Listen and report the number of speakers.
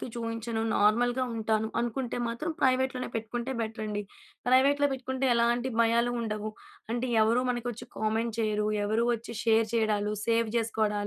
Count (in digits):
1